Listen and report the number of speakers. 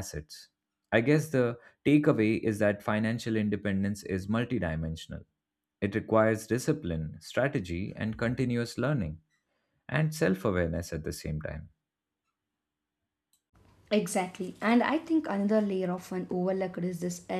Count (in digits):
2